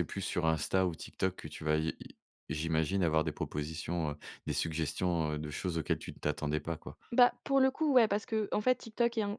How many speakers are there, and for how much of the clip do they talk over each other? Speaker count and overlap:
two, no overlap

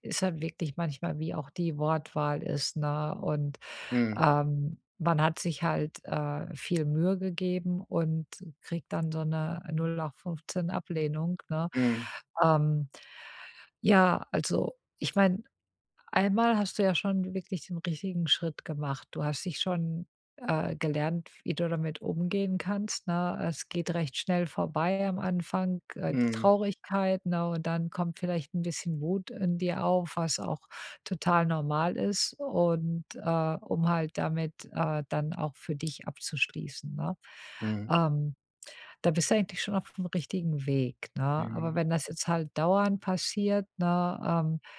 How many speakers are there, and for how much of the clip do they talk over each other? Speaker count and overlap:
two, about 2%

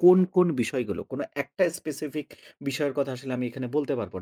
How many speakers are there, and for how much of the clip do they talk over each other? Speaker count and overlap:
one, no overlap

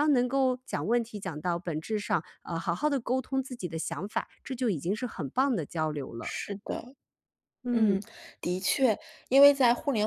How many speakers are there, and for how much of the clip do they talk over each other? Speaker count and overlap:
two, about 4%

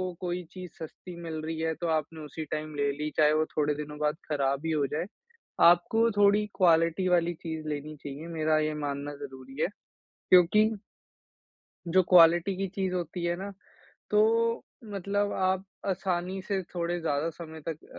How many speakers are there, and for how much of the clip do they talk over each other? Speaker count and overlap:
one, no overlap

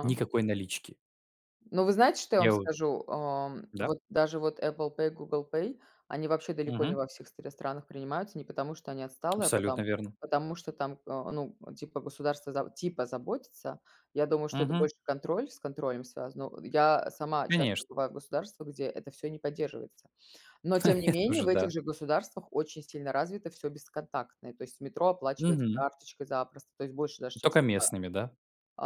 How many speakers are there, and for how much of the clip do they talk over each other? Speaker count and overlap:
two, about 13%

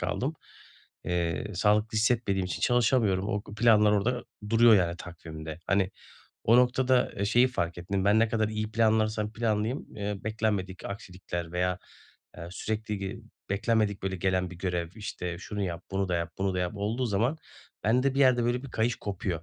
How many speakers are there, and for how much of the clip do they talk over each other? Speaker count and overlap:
one, no overlap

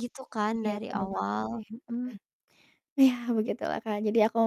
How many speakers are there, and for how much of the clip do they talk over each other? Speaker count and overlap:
two, about 13%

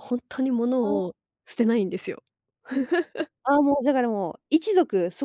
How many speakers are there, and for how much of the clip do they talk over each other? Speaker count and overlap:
two, about 5%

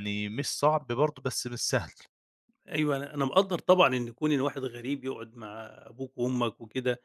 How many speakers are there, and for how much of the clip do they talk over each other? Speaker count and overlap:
two, no overlap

